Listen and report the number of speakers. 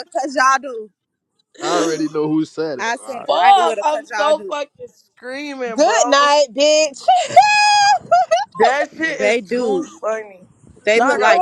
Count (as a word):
four